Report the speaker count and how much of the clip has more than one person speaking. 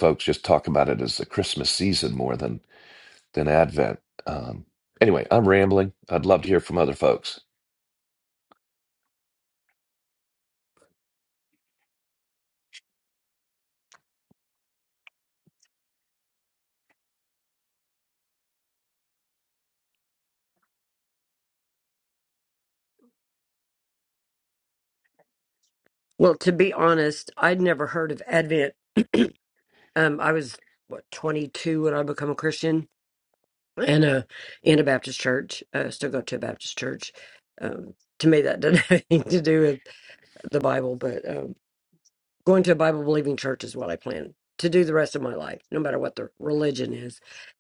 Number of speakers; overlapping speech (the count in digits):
2, no overlap